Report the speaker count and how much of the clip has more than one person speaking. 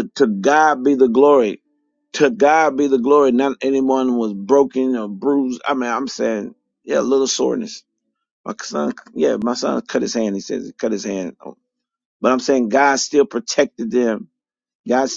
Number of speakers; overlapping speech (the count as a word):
one, no overlap